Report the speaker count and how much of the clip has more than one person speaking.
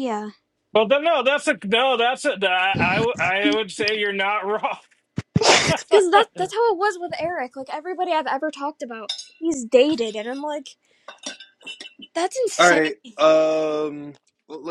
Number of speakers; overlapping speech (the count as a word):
three, about 2%